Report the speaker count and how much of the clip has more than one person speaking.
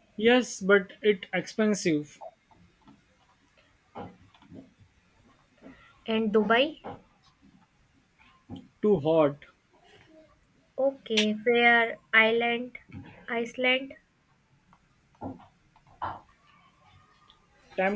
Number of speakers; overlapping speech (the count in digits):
2, no overlap